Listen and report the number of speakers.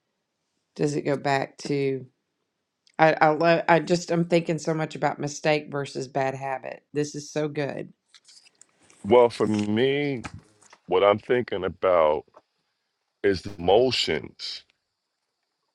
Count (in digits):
2